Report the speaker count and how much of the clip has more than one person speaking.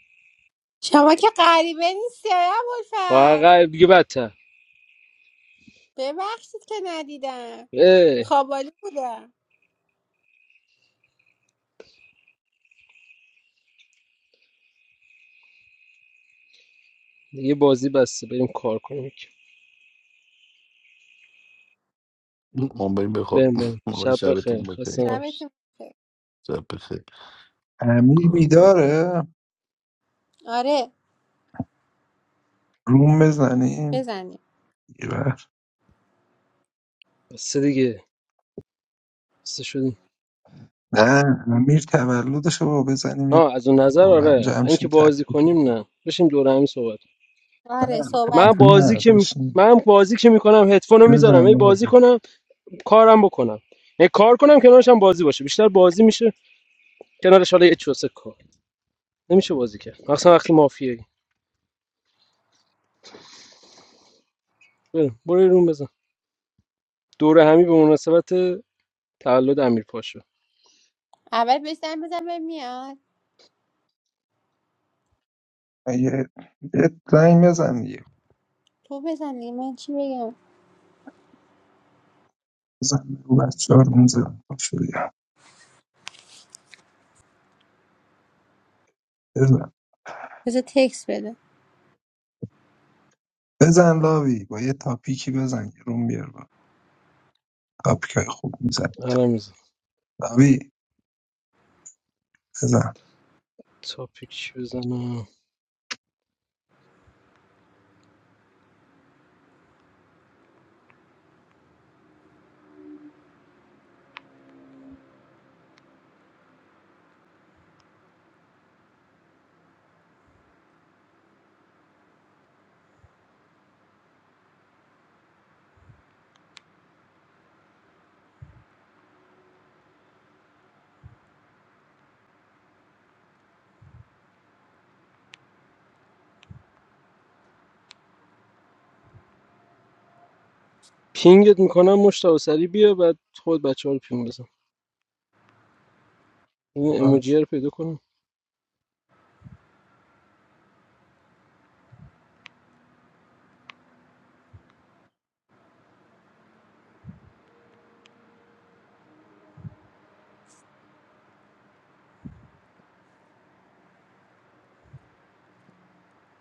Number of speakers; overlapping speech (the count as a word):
four, about 4%